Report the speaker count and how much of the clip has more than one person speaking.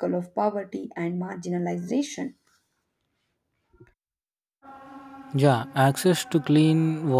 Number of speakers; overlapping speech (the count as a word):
two, no overlap